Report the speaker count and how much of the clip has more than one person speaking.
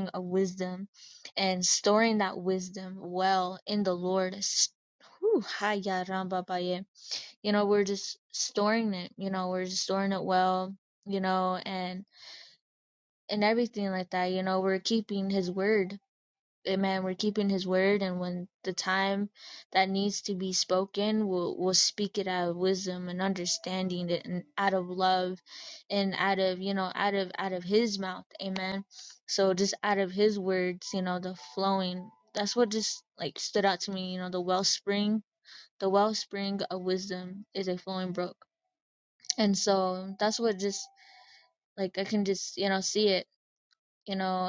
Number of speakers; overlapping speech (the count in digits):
1, no overlap